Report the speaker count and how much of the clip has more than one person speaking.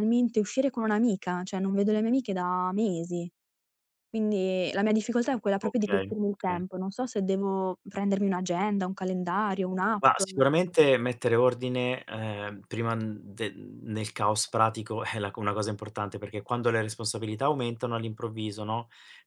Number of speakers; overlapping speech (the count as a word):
two, about 4%